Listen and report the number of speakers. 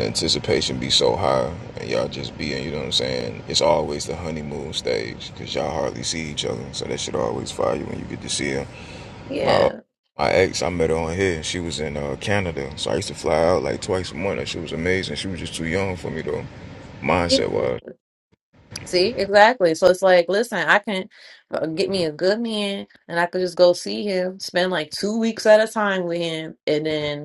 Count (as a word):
two